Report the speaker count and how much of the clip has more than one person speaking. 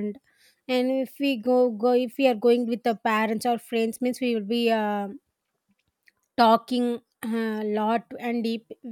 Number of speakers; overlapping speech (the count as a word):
one, no overlap